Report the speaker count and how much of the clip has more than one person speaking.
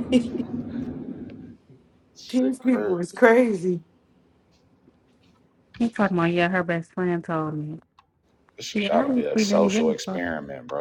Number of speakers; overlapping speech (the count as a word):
three, about 20%